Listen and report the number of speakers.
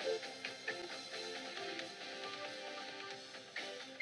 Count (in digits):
0